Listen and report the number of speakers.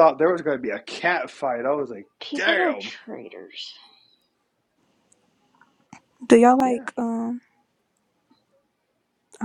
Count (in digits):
3